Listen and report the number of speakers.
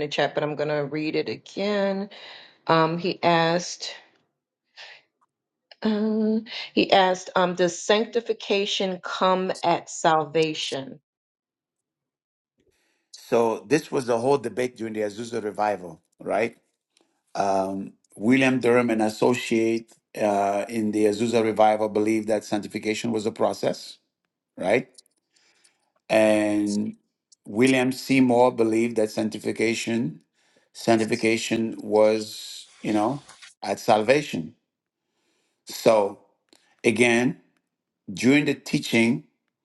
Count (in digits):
2